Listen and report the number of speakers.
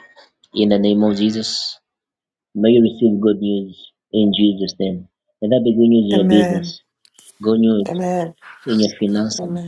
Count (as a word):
two